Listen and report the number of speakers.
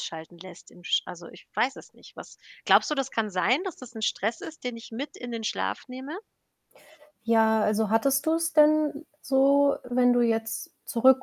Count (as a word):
two